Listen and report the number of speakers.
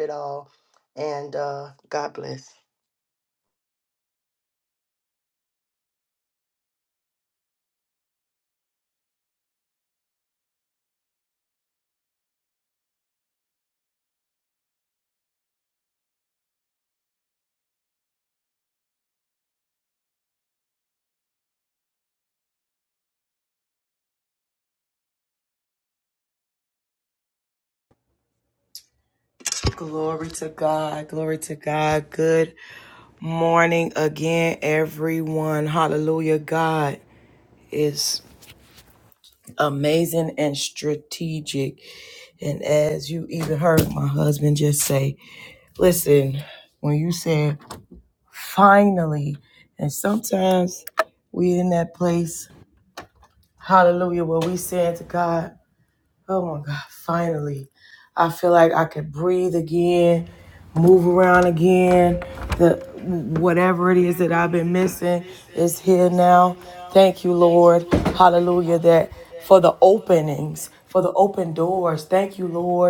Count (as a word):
two